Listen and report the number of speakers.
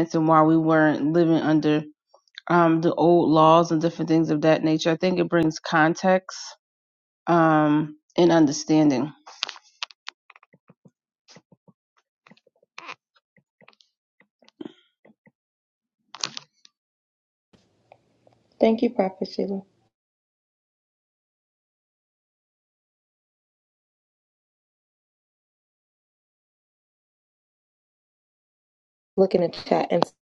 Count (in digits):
2